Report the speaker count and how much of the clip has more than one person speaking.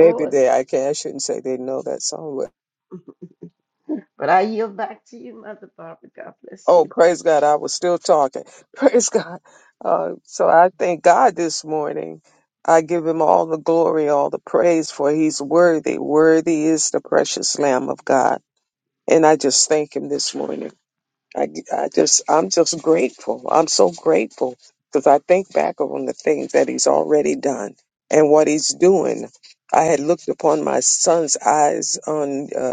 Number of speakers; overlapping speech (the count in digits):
2, about 2%